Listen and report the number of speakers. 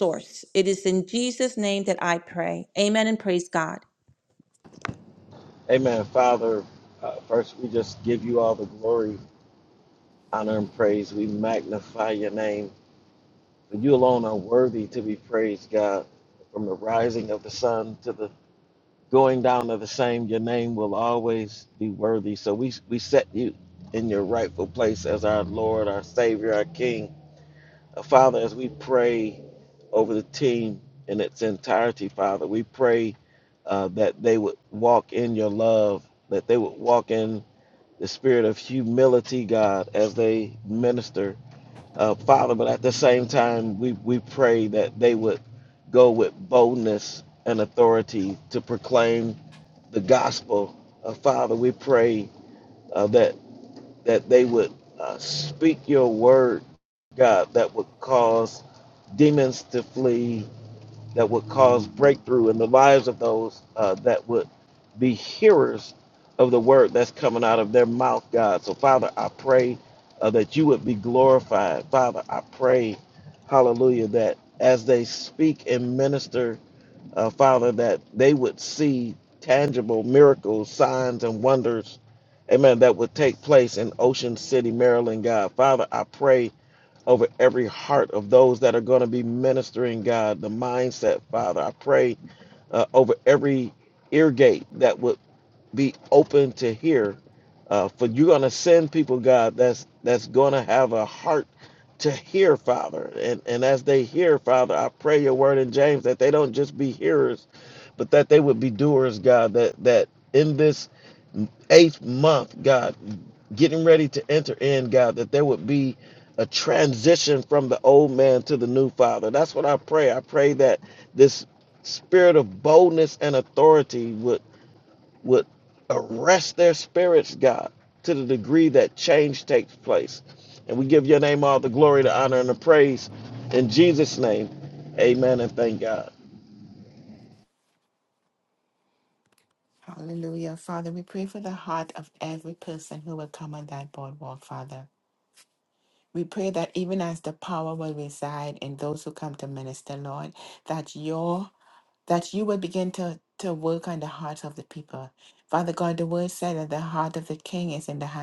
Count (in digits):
3